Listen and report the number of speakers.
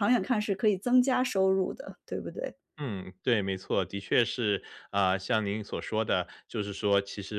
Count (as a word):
two